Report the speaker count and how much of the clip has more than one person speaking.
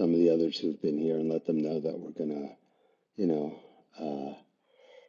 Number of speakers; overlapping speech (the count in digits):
1, no overlap